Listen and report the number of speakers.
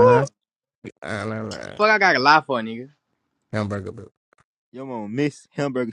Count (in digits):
3